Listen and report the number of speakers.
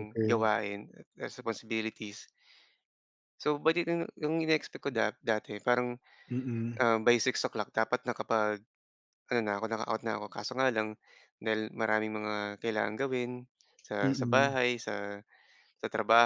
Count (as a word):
two